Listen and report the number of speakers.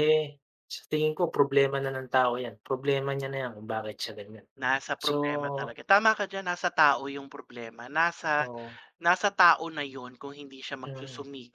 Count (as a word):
two